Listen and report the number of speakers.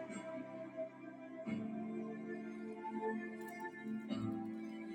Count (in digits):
0